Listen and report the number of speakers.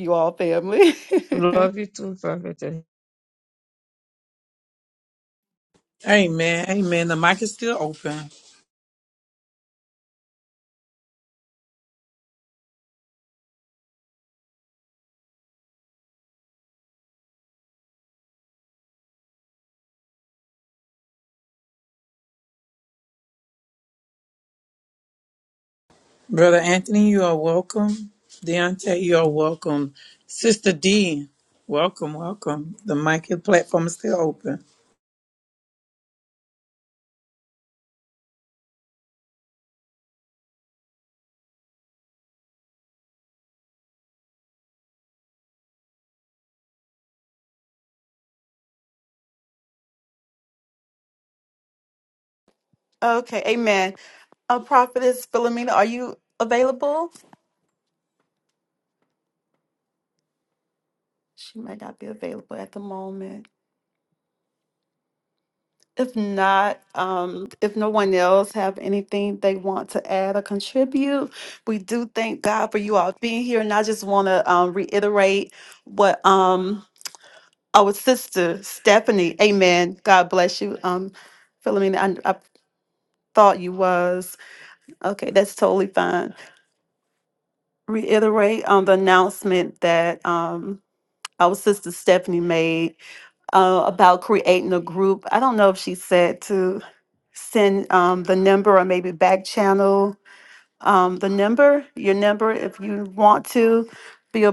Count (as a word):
three